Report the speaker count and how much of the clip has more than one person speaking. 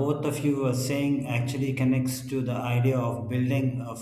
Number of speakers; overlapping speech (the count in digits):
1, no overlap